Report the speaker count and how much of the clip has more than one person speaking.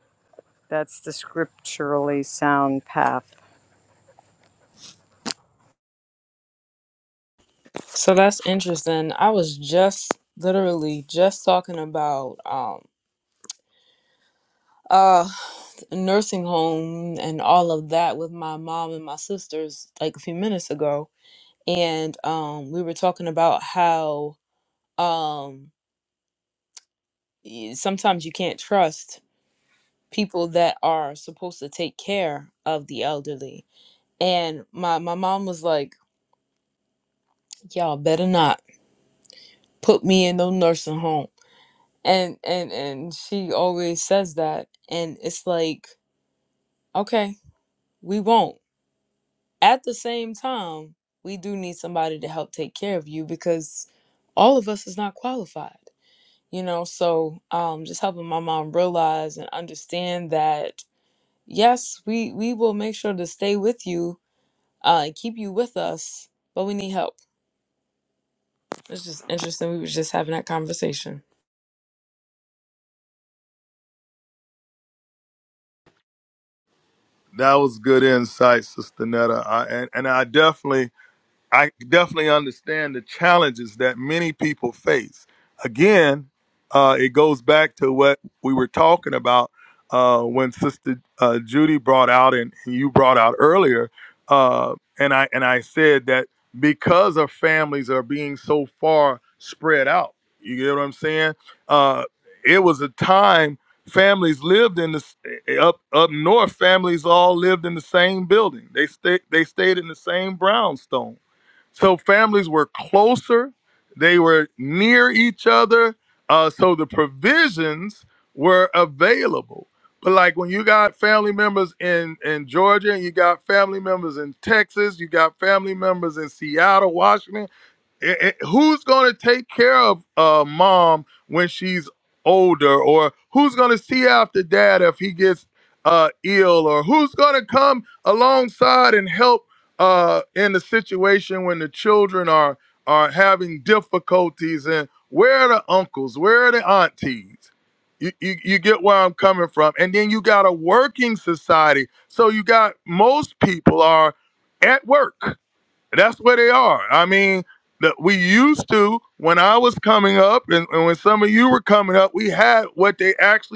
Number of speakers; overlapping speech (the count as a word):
three, no overlap